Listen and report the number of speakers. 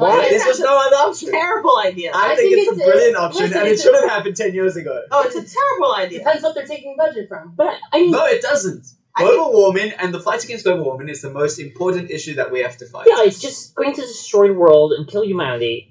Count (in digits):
4